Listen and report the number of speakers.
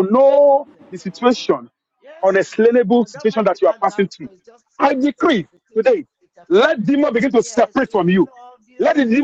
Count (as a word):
two